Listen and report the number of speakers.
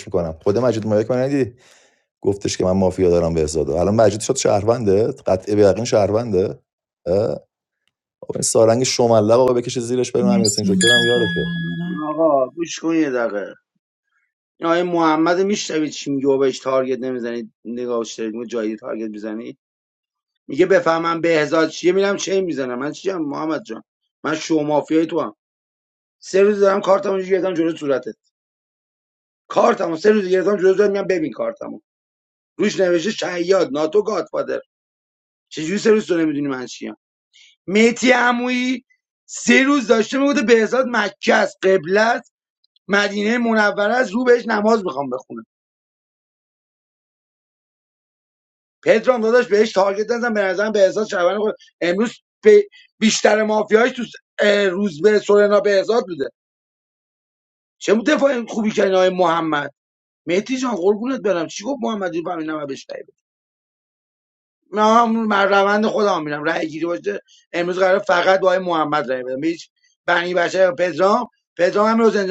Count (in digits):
3